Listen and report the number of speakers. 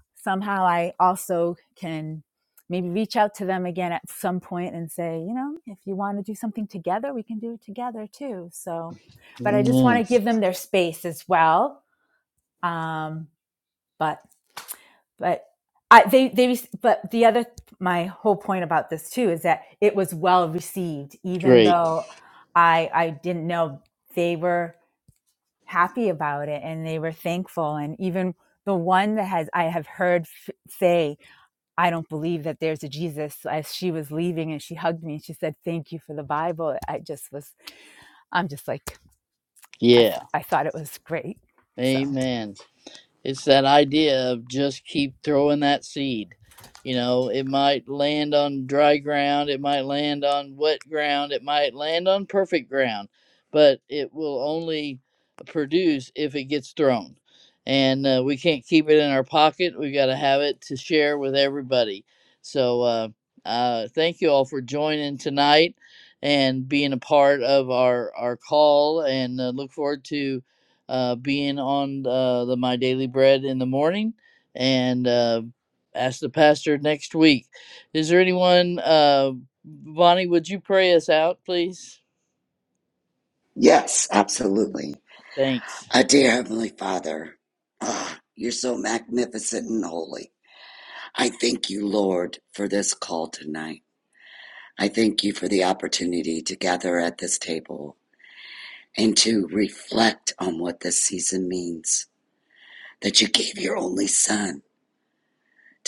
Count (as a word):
three